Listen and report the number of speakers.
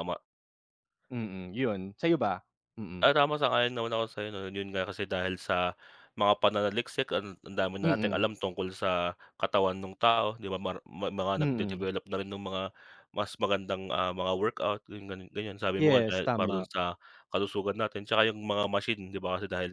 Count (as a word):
two